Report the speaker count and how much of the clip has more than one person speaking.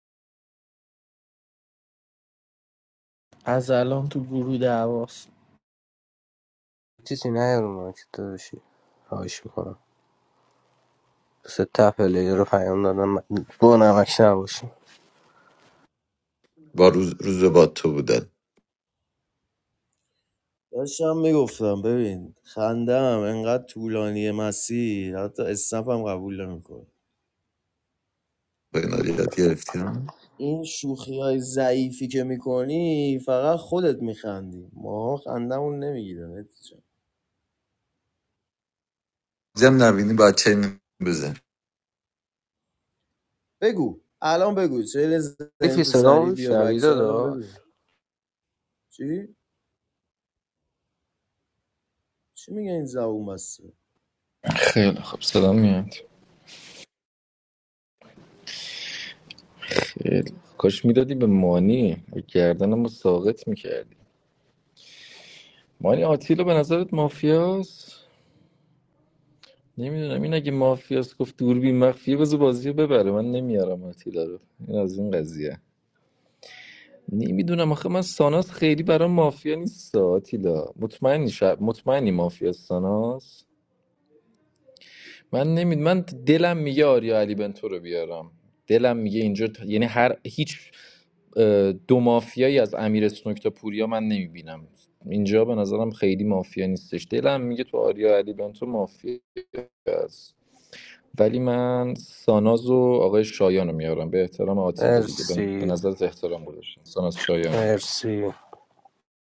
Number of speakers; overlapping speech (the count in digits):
5, about 3%